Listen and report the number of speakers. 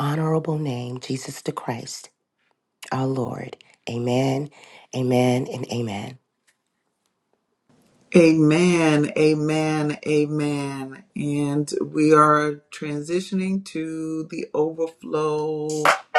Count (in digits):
2